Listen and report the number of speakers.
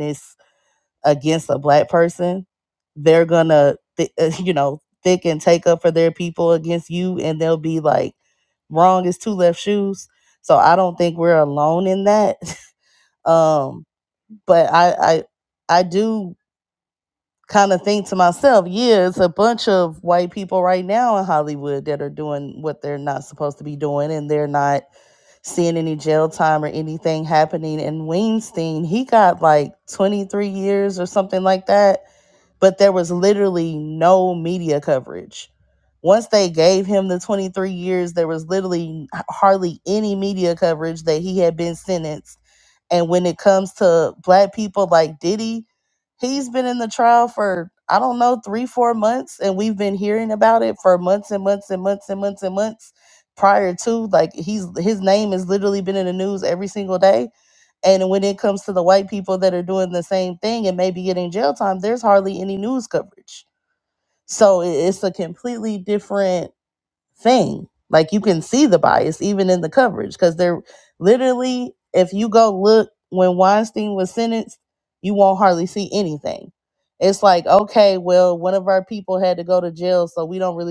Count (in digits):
1